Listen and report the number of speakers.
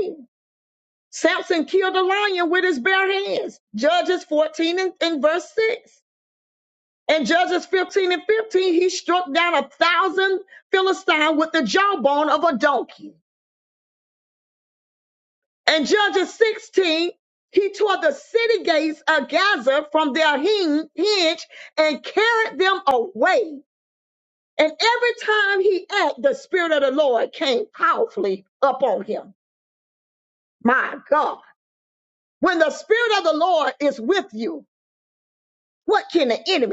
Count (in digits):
1